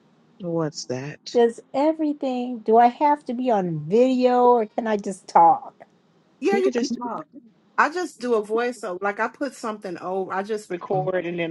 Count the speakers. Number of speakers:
3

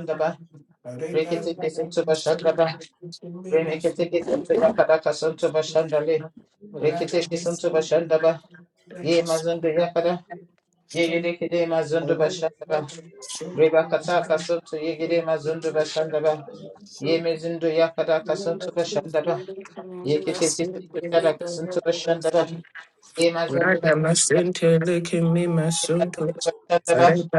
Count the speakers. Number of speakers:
2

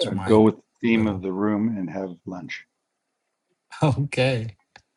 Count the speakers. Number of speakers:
2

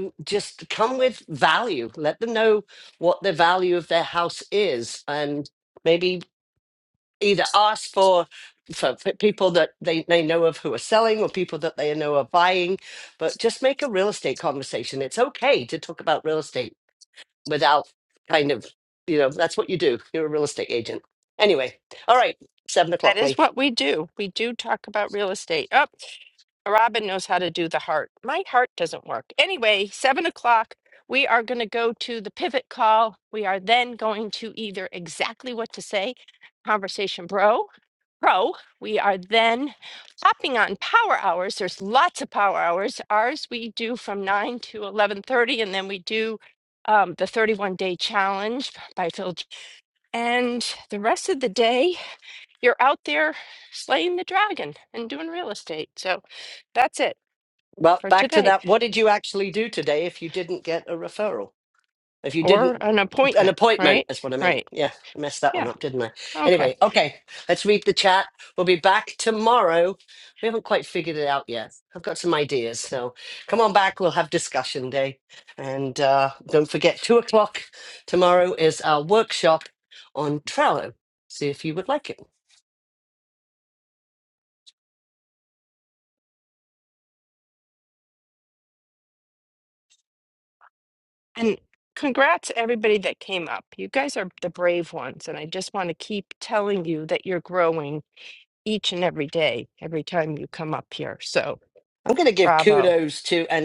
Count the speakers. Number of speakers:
2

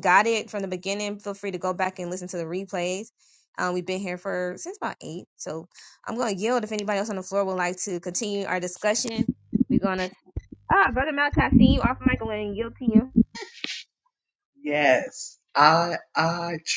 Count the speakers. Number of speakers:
2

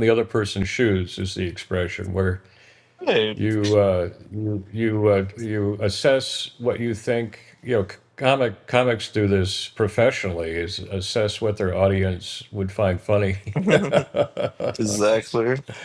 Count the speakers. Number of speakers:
2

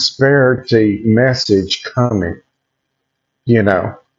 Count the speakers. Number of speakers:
1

